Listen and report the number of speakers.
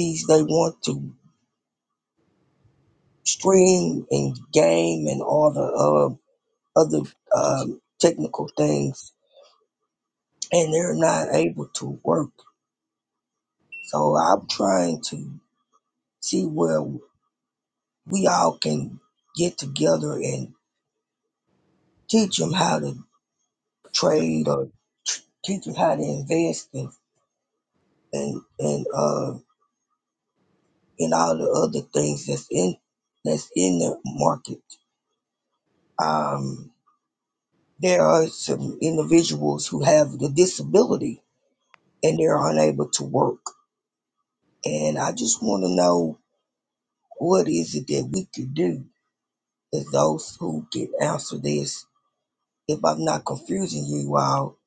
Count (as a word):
one